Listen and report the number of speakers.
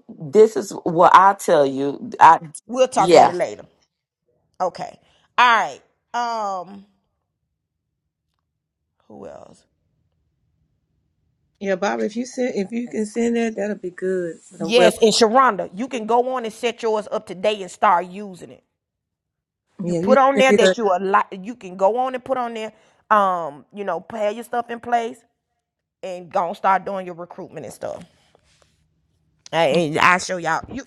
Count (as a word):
three